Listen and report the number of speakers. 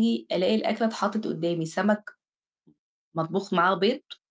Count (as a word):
one